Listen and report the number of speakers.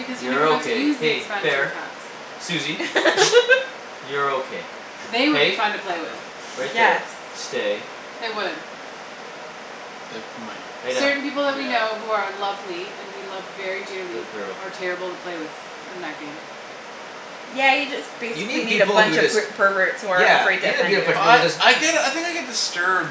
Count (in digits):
4